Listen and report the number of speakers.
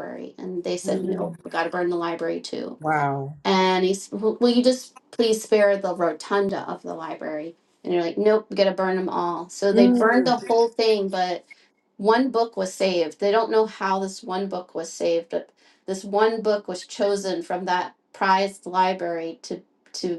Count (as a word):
two